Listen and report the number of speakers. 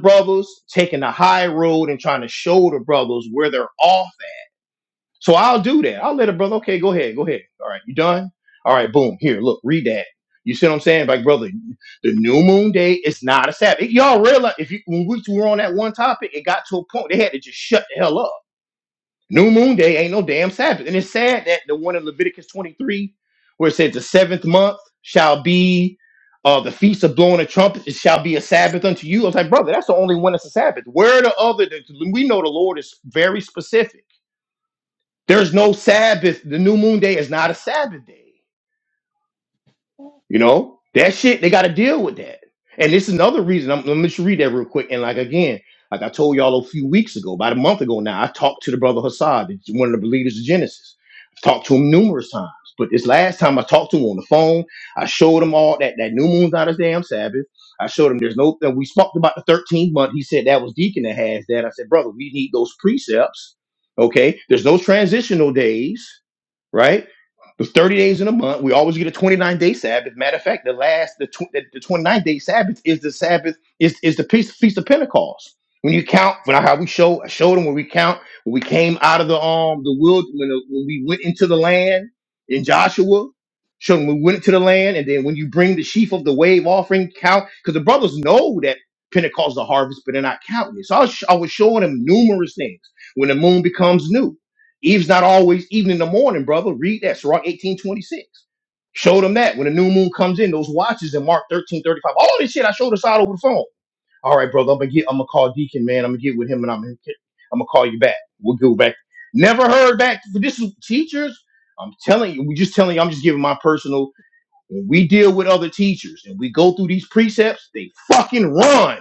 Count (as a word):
one